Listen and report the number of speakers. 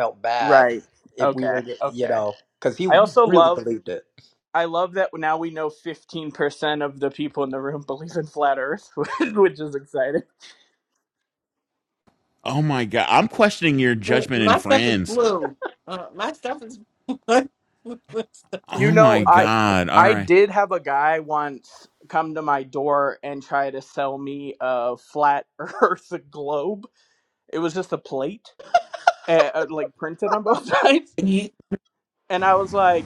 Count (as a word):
four